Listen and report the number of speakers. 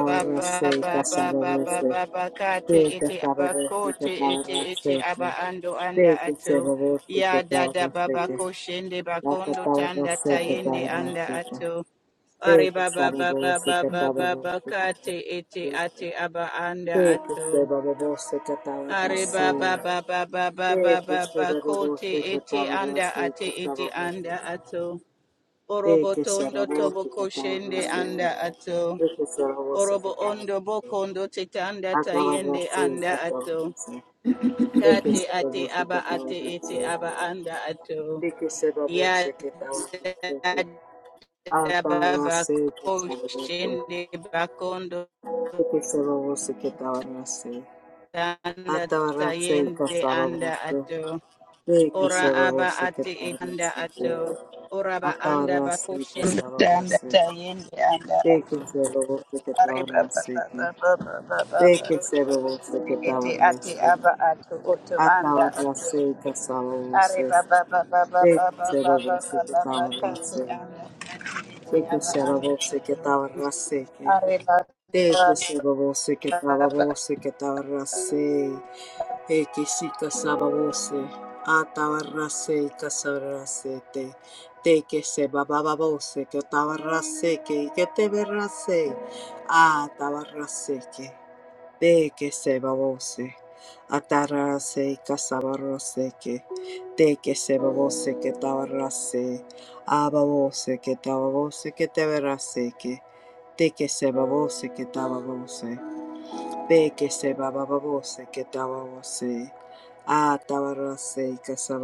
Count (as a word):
two